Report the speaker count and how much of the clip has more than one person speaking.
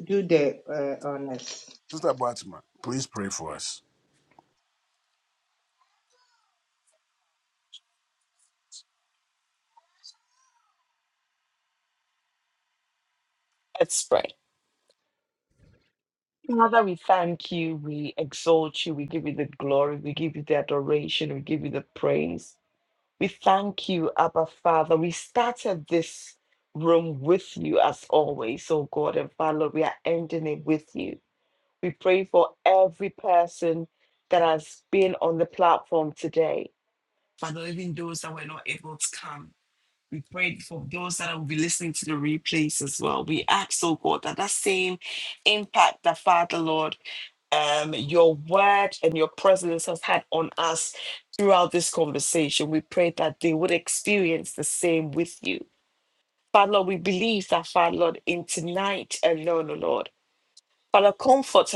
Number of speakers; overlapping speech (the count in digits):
3, no overlap